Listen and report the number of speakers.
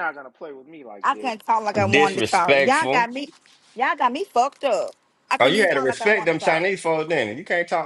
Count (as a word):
three